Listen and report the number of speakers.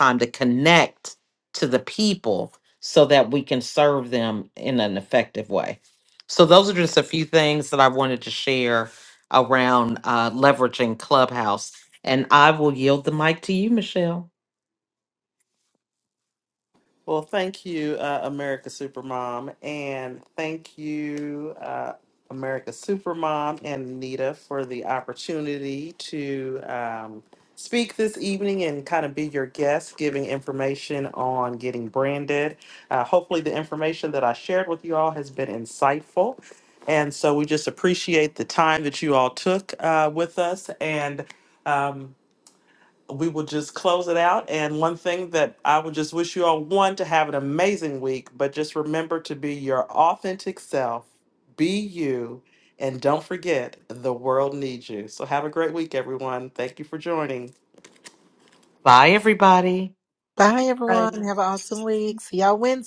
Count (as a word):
three